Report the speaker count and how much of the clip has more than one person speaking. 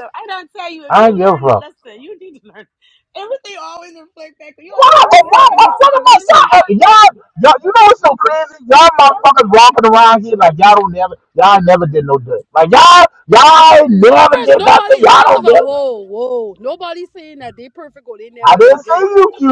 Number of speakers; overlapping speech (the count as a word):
three, about 23%